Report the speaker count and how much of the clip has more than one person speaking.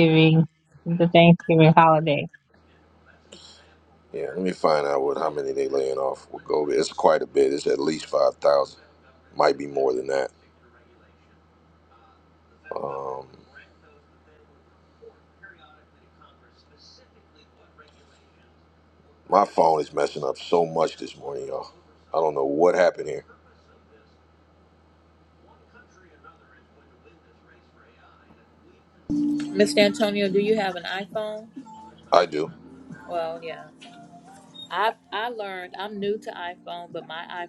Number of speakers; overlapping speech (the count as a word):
three, no overlap